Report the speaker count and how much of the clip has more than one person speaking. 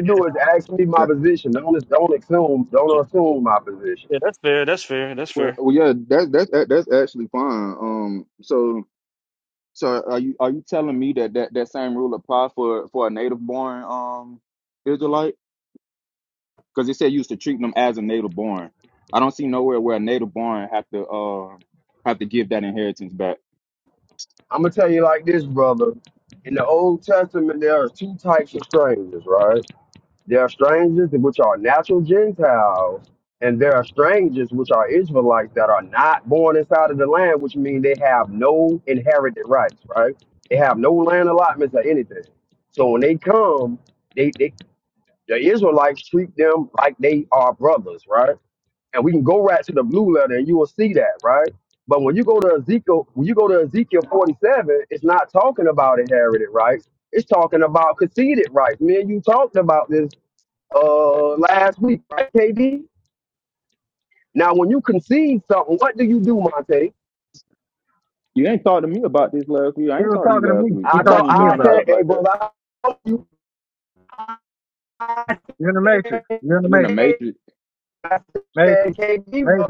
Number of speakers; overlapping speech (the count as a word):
four, about 6%